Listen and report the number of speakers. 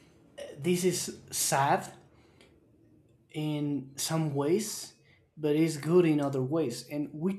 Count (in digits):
1